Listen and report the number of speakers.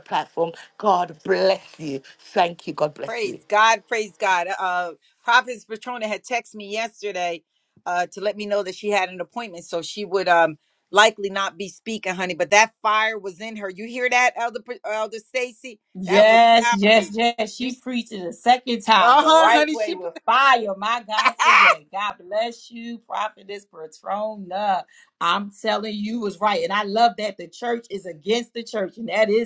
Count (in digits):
3